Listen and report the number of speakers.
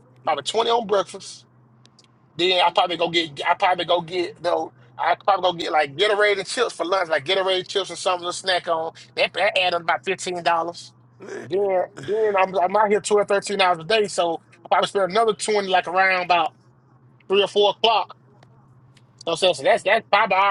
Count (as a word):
one